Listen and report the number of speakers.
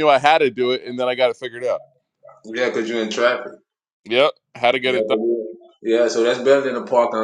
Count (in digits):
2